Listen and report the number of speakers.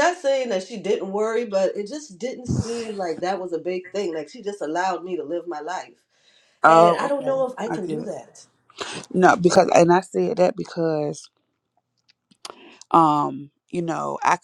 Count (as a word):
two